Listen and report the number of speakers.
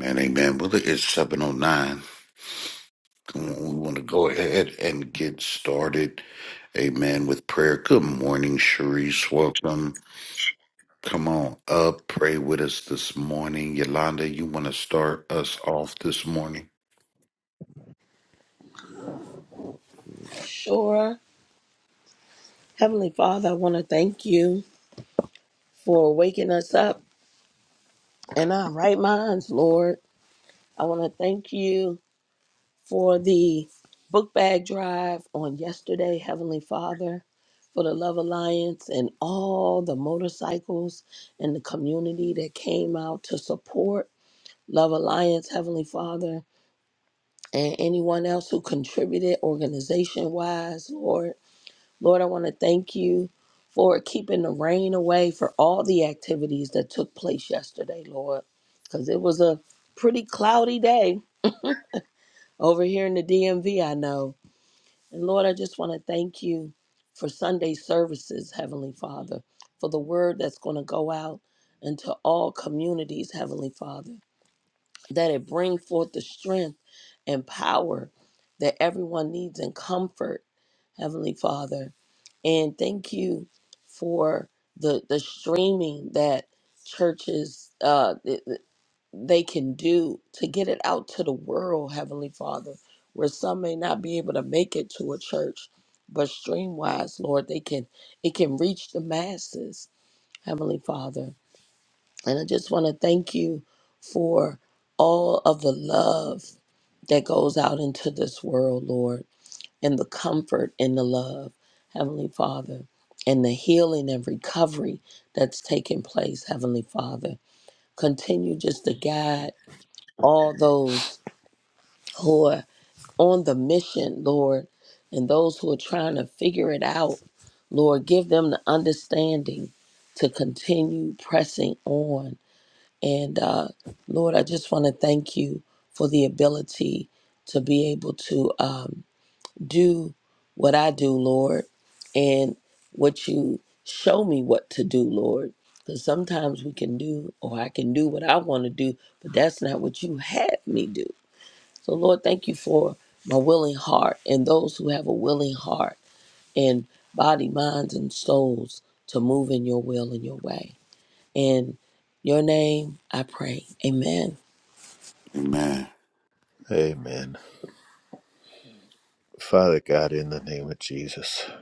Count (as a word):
three